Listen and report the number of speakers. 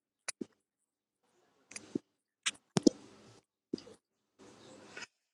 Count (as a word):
zero